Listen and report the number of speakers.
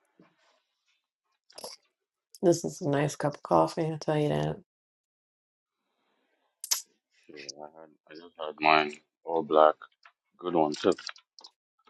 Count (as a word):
two